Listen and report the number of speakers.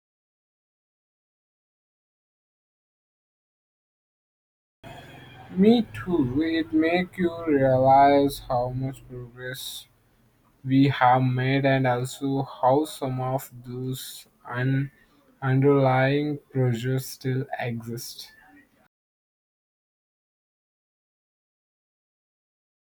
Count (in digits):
1